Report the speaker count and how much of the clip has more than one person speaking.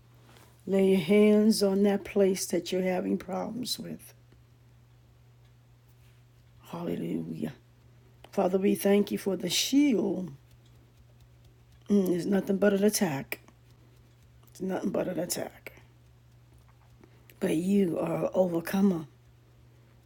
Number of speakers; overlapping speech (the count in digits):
1, no overlap